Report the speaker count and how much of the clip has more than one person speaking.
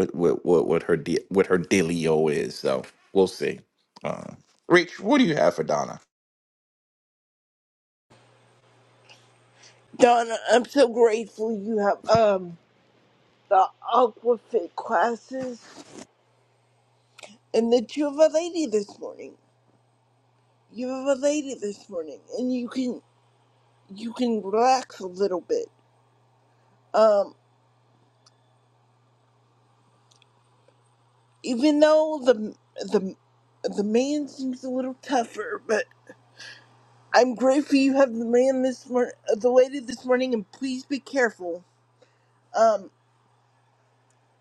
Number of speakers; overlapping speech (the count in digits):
2, no overlap